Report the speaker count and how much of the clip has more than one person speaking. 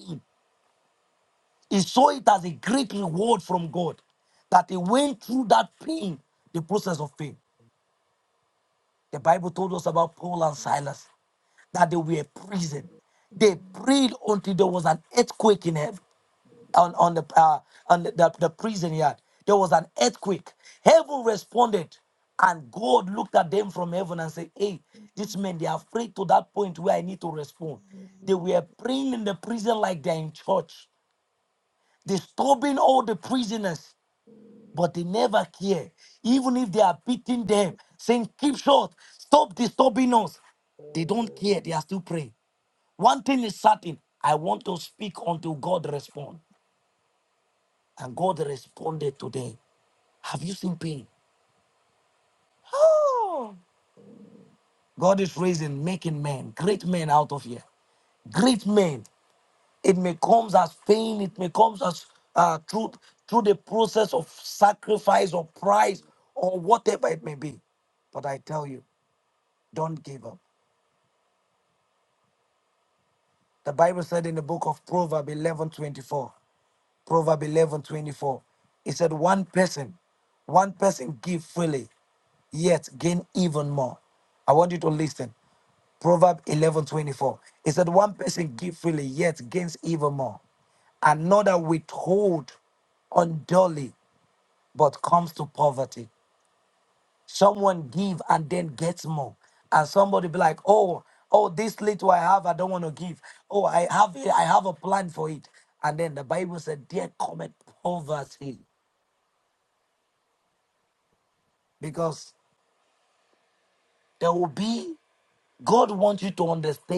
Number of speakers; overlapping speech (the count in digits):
1, no overlap